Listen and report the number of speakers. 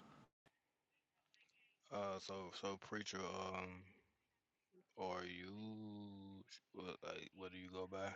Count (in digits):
1